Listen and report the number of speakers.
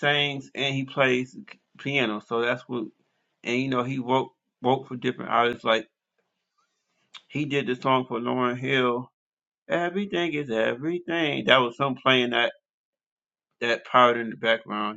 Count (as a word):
one